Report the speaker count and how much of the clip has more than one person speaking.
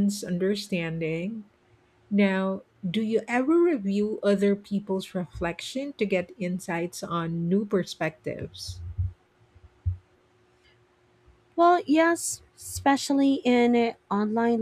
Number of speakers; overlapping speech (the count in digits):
2, no overlap